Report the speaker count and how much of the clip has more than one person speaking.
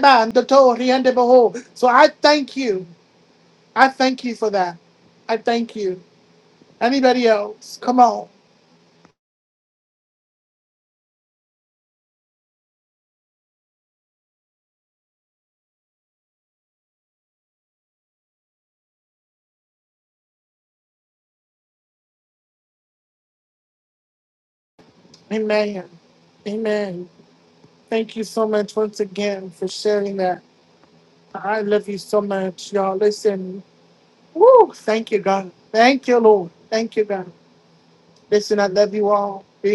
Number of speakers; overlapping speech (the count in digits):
1, no overlap